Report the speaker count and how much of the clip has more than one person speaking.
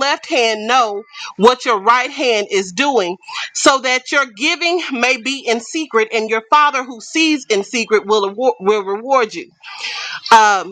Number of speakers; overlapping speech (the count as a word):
one, no overlap